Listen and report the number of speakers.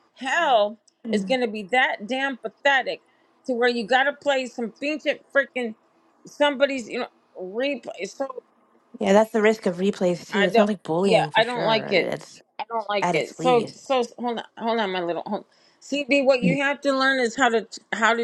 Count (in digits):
2